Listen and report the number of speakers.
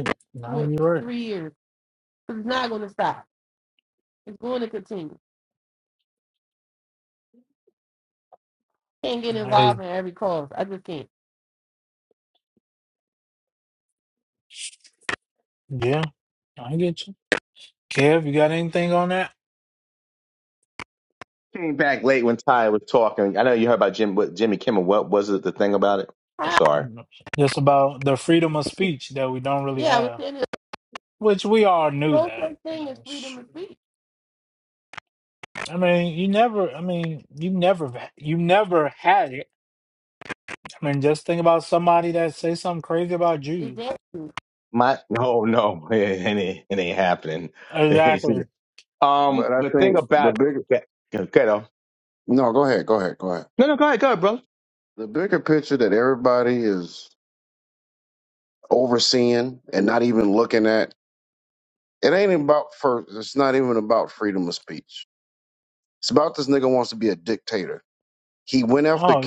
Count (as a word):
four